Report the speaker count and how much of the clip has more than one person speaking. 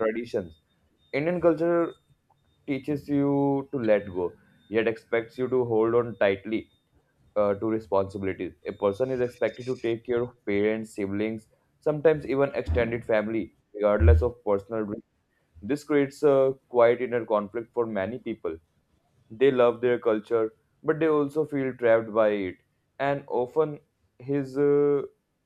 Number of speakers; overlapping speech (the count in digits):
1, no overlap